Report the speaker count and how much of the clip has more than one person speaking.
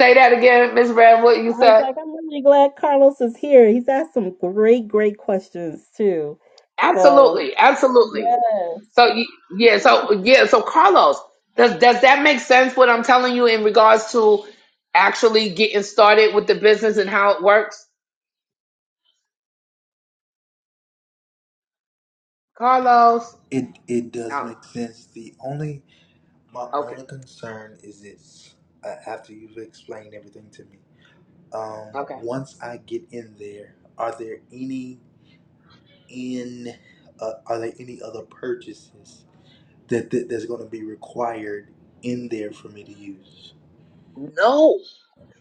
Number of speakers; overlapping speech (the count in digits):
3, about 4%